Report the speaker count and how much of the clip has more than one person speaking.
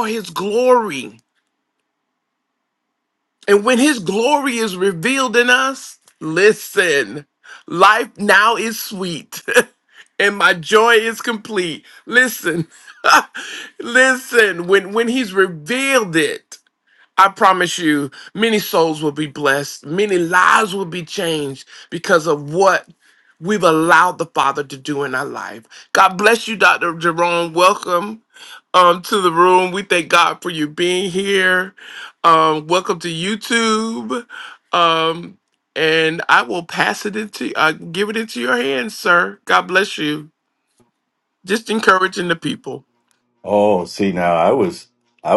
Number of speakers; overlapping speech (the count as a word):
two, no overlap